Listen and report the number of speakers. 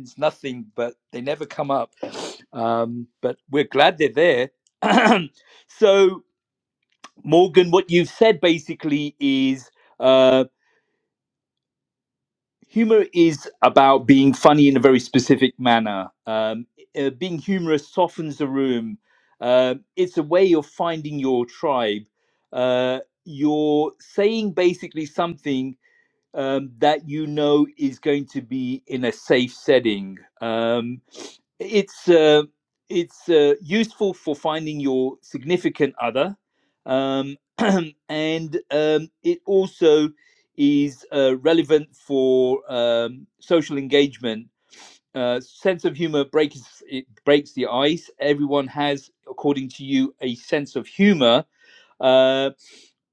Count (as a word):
one